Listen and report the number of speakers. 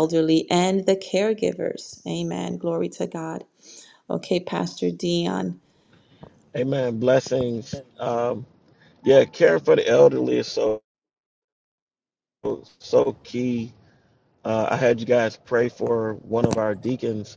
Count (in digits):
2